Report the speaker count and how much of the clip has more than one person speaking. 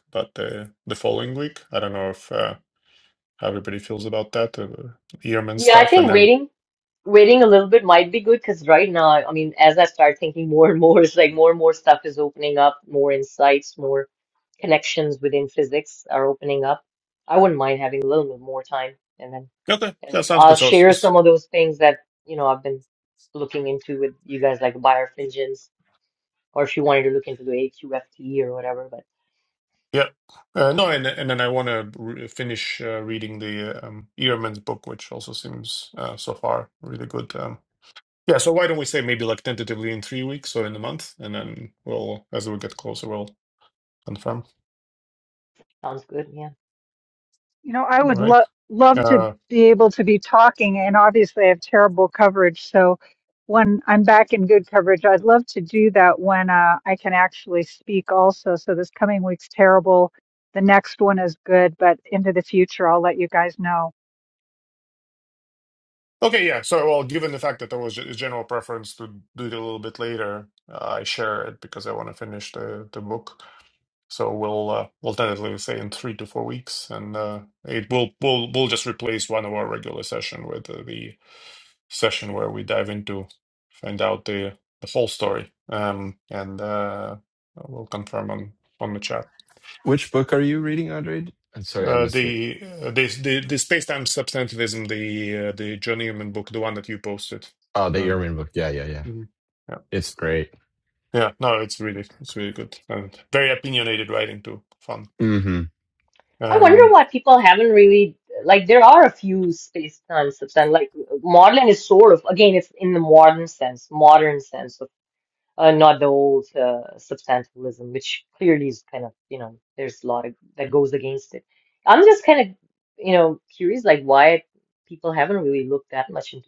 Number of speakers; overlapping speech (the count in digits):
4, about 3%